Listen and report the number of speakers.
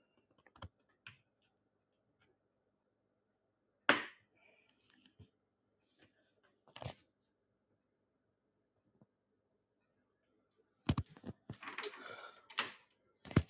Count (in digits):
0